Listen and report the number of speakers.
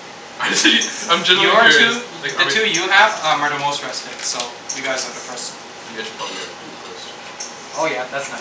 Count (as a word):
two